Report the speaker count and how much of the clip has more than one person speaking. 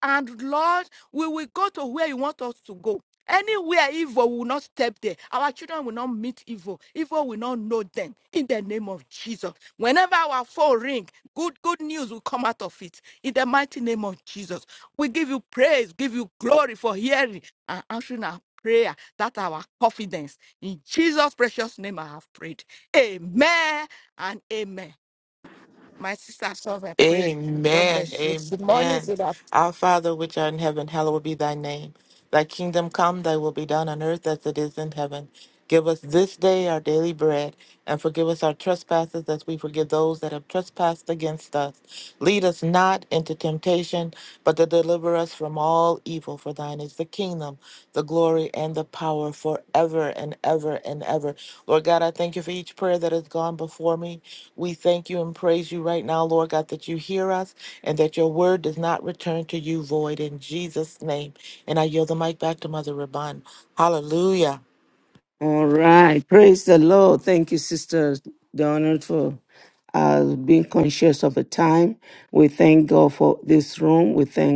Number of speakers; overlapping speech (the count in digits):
3, about 2%